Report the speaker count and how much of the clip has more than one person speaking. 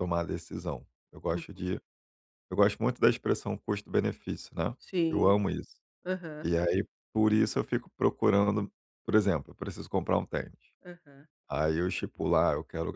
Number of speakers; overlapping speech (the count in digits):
2, about 4%